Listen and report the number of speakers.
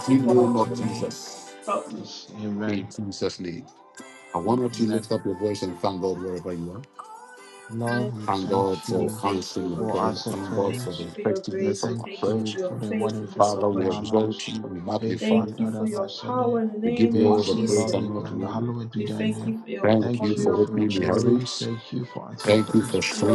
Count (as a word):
three